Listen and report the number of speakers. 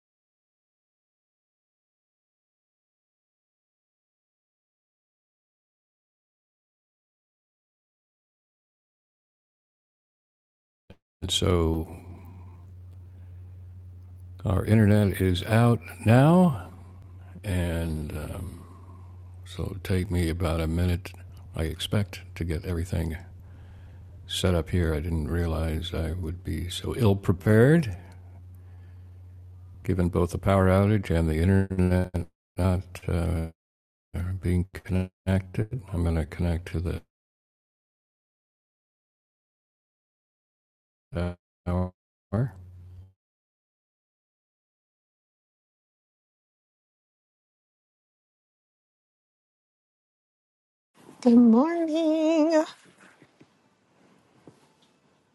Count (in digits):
2